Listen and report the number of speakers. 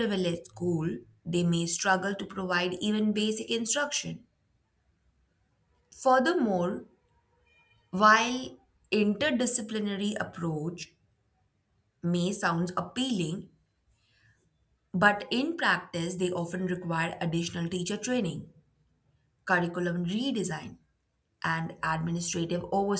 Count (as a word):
one